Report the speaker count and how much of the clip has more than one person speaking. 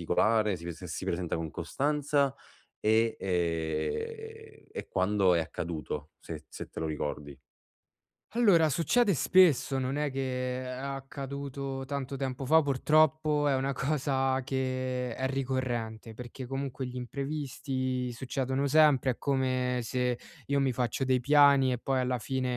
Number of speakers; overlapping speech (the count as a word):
two, no overlap